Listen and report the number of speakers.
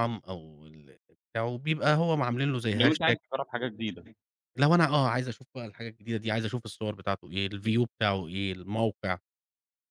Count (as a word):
two